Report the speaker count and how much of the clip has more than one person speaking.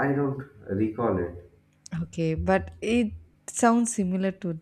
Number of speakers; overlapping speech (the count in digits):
2, no overlap